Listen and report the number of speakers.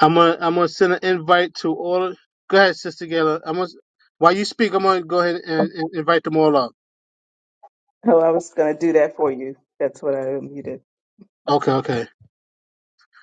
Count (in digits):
2